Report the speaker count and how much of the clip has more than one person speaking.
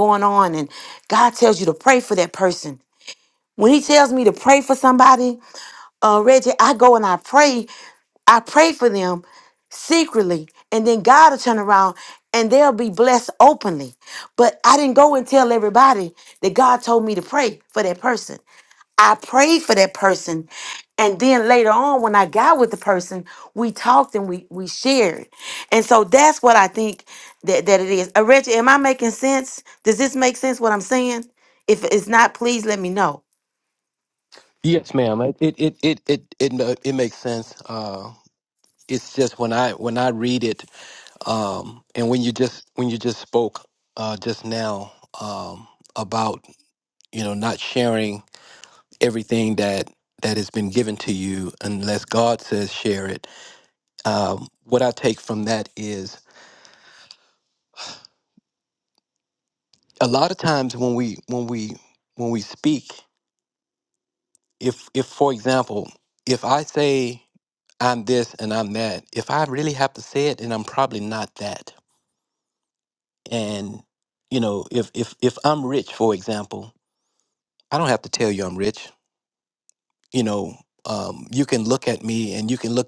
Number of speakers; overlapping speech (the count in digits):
2, no overlap